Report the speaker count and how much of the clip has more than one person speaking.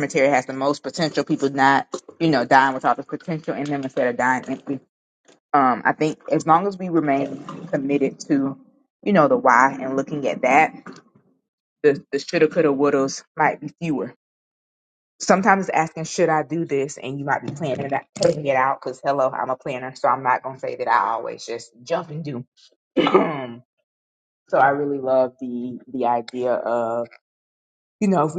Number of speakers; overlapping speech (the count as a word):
one, no overlap